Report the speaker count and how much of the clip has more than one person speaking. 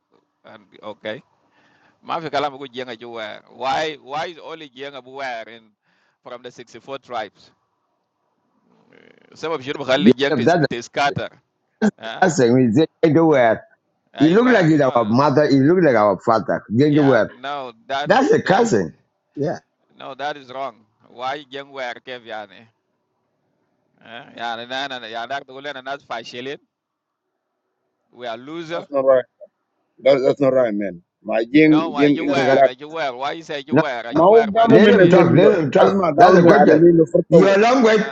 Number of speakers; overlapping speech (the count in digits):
3, about 19%